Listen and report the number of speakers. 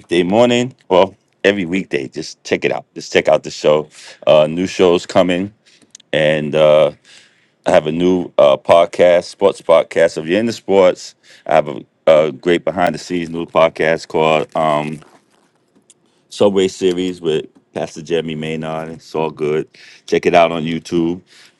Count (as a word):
one